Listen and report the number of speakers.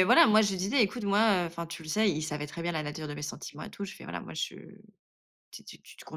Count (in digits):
1